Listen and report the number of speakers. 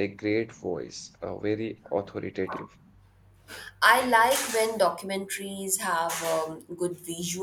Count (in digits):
2